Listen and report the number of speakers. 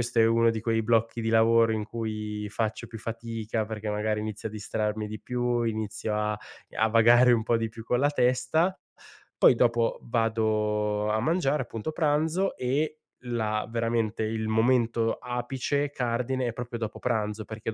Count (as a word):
one